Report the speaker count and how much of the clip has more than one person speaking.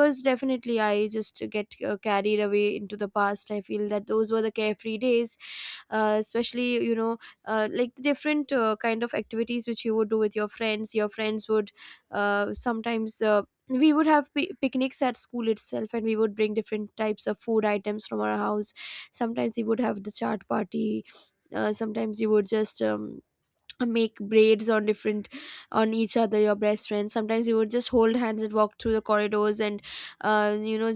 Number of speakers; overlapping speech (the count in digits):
1, no overlap